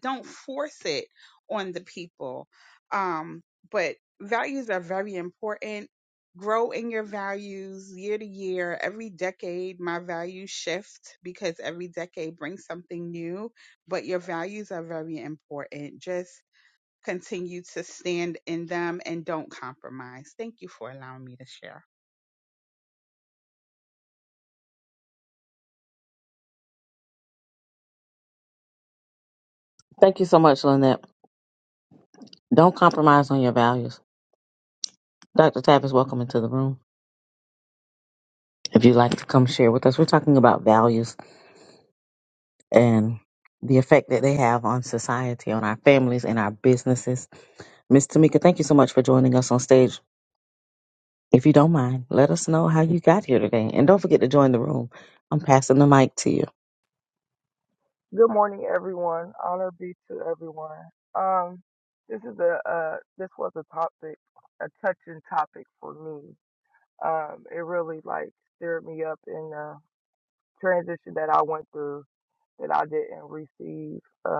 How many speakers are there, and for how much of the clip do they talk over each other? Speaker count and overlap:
three, no overlap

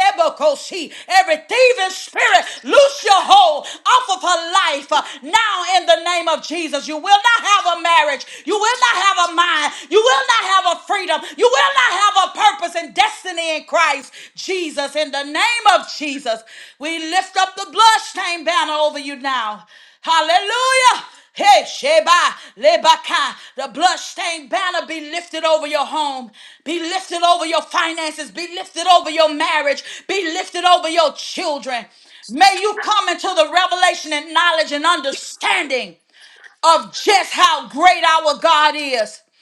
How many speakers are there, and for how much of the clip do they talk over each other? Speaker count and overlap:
one, no overlap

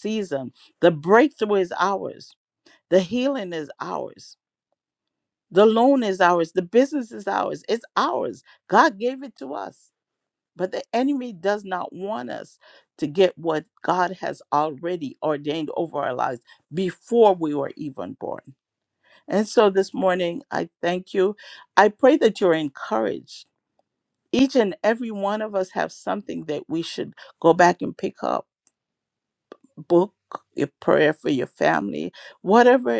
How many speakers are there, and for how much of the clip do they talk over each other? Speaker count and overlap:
one, no overlap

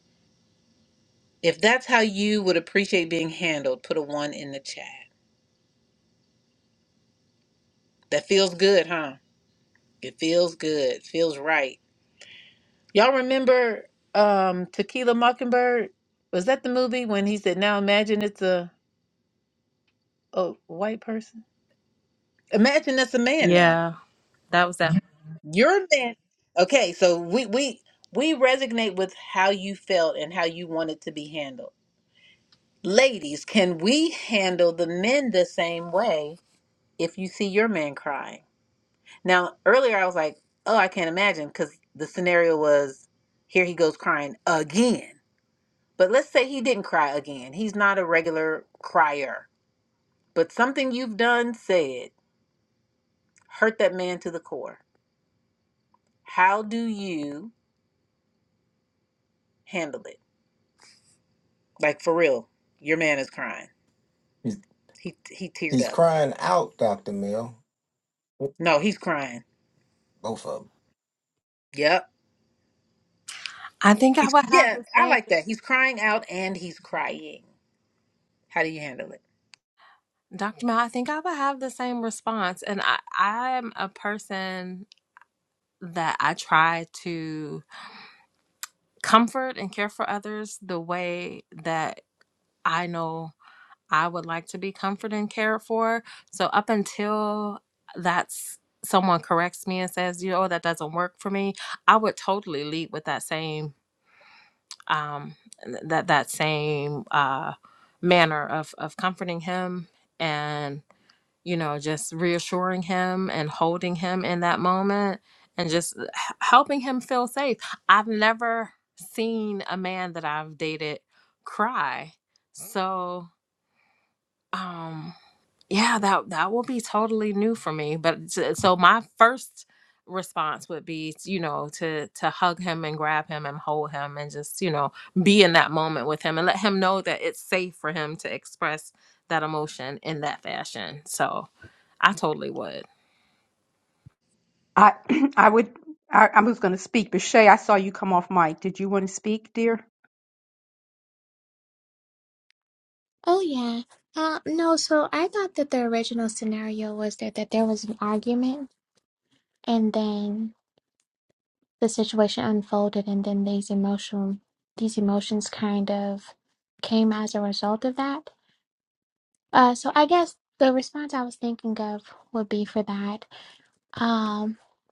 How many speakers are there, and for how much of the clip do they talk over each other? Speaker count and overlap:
five, about 1%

